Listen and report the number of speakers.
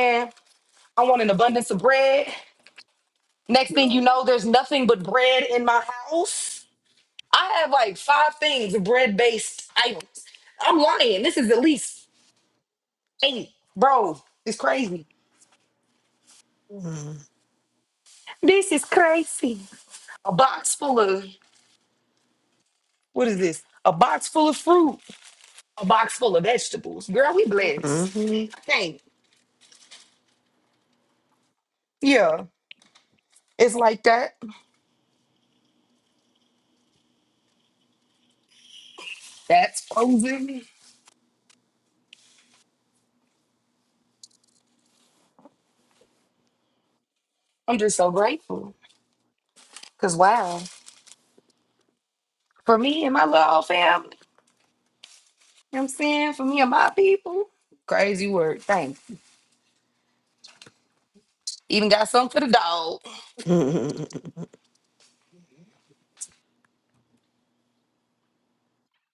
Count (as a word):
two